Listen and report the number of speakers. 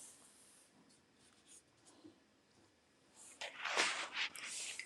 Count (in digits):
0